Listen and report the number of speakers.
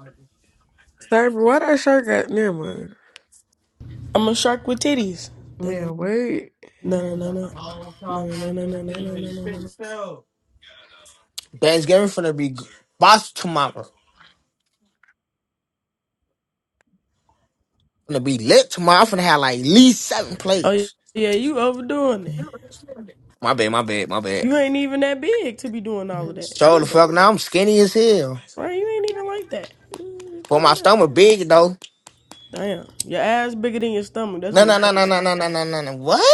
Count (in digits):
3